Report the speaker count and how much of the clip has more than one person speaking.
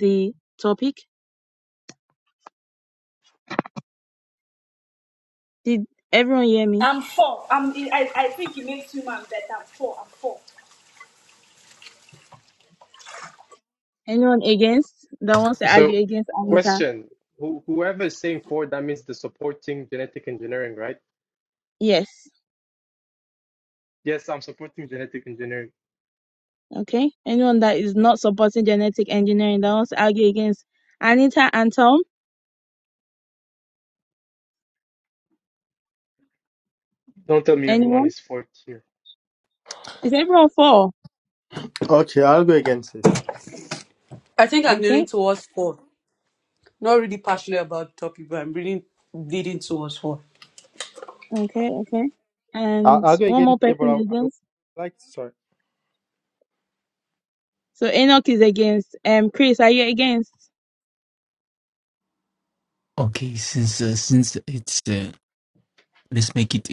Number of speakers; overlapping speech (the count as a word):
six, about 5%